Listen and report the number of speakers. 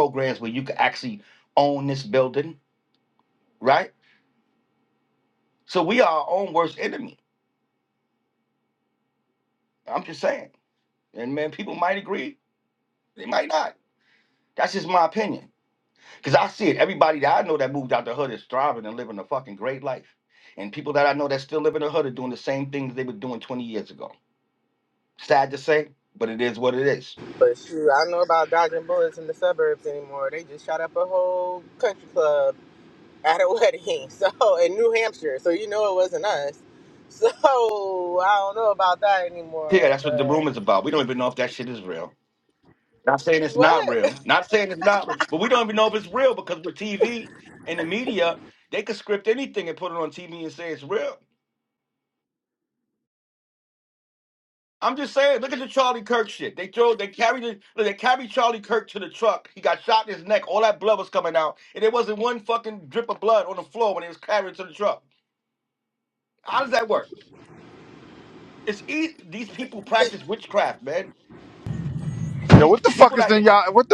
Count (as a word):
three